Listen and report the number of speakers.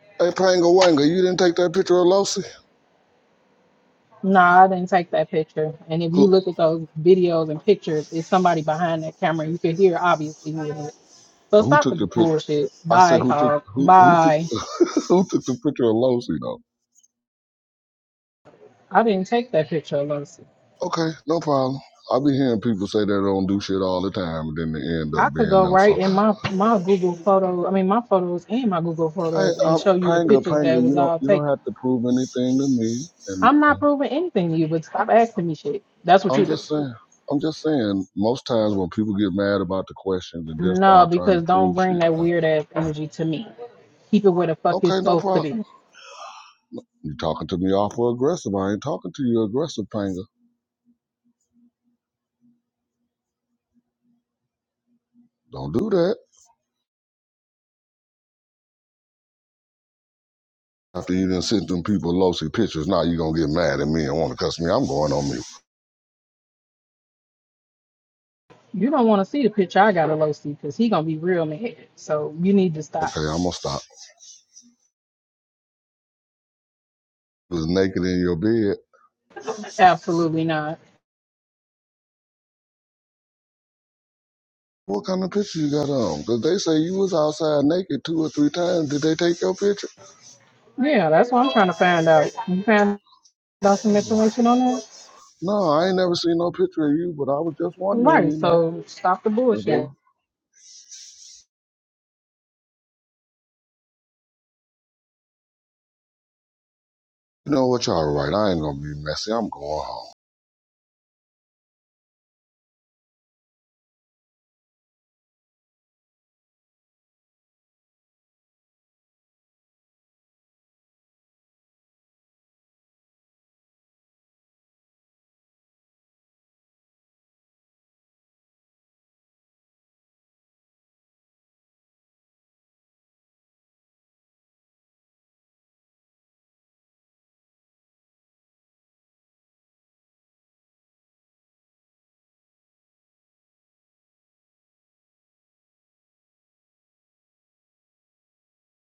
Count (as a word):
two